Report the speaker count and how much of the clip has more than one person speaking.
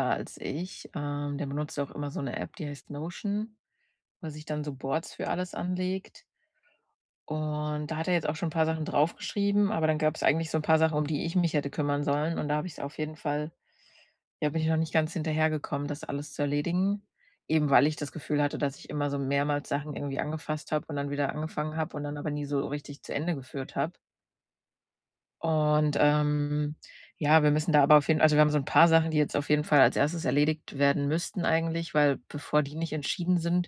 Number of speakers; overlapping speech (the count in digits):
1, no overlap